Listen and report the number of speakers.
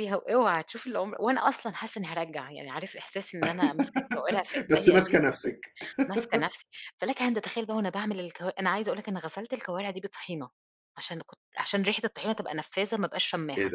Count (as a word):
two